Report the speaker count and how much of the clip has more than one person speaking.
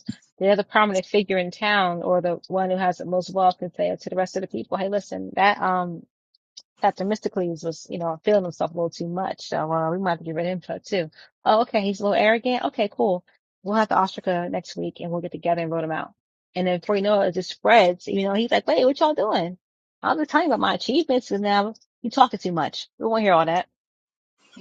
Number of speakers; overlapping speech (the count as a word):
one, no overlap